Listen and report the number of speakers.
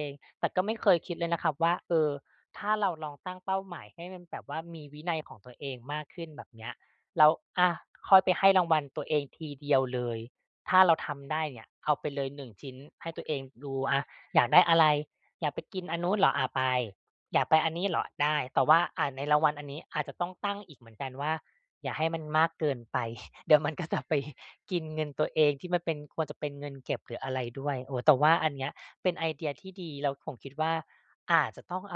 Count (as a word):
one